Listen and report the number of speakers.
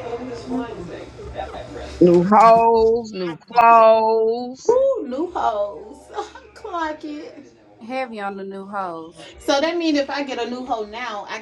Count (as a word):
three